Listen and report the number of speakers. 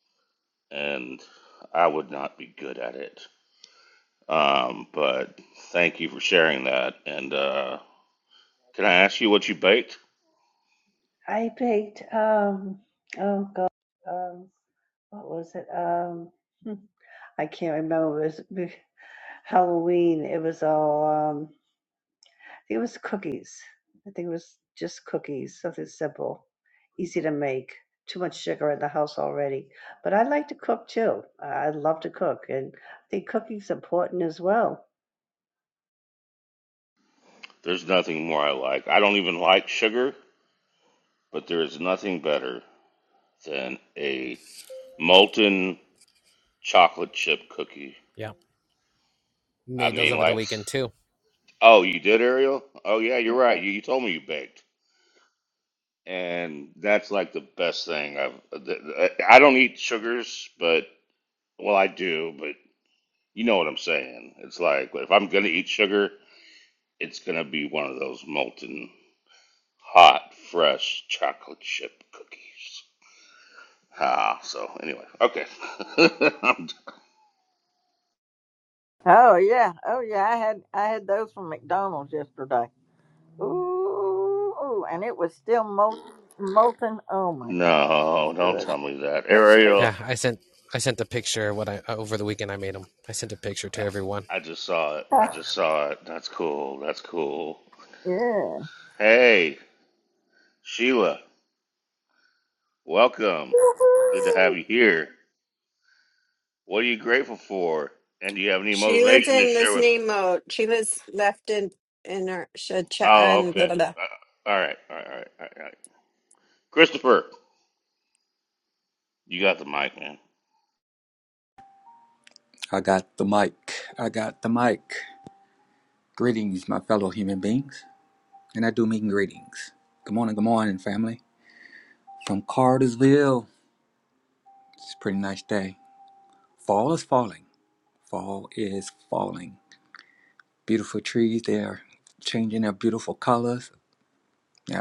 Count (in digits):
6